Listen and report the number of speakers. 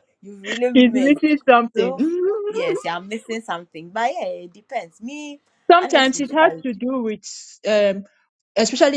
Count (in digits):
2